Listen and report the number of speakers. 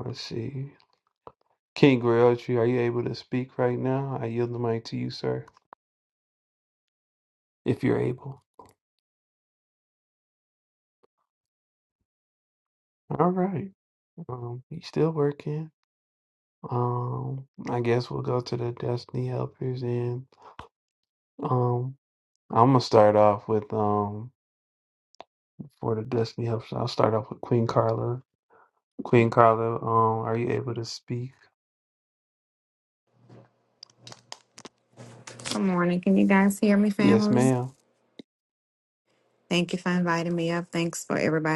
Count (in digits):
2